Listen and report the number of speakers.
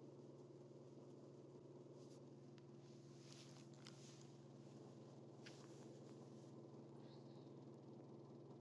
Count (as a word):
zero